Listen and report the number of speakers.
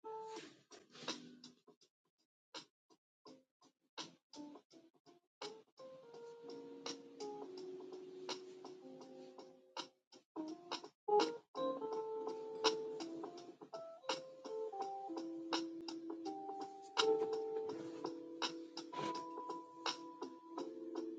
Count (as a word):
zero